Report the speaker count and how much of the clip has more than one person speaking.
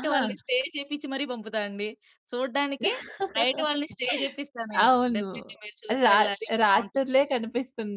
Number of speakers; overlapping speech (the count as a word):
two, about 22%